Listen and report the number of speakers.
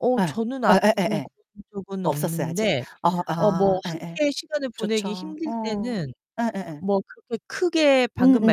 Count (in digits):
2